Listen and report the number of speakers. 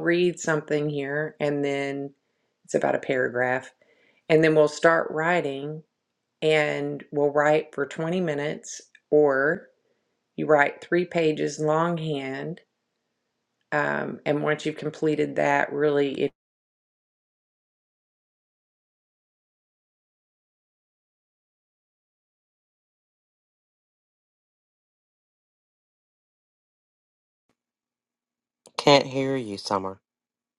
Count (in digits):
2